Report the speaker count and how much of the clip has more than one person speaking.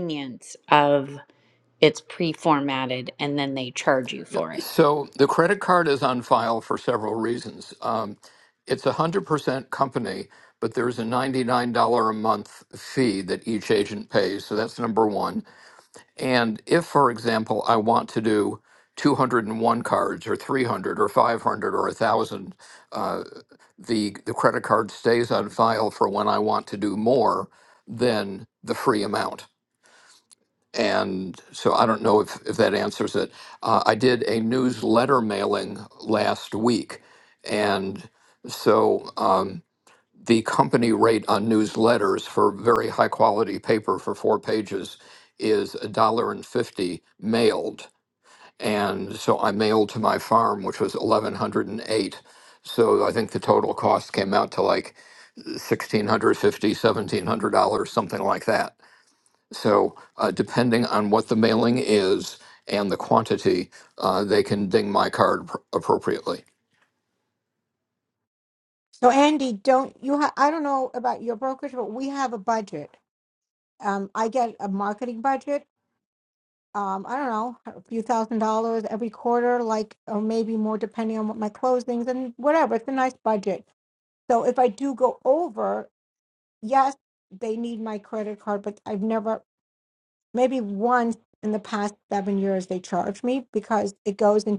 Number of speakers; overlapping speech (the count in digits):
3, under 1%